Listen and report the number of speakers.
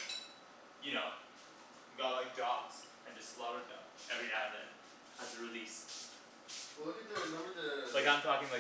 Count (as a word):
two